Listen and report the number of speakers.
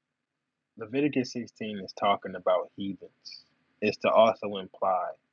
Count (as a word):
one